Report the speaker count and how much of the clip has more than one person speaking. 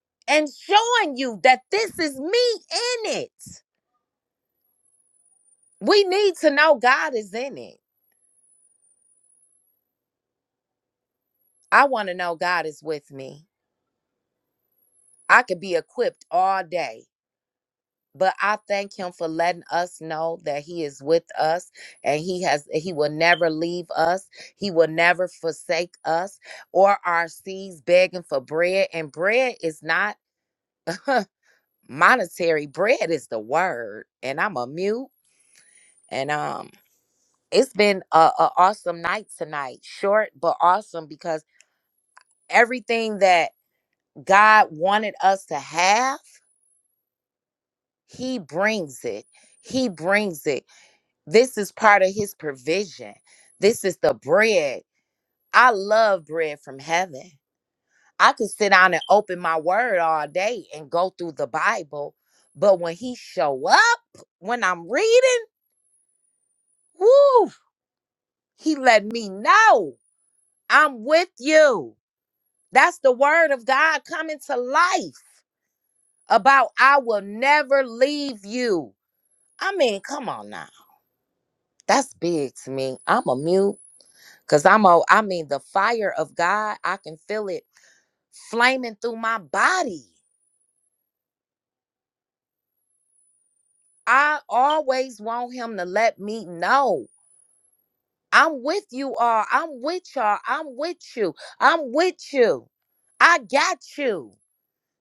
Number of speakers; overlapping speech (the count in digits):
1, no overlap